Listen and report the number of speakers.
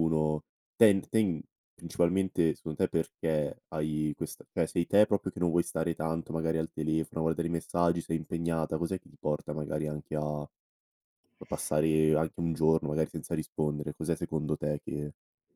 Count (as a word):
one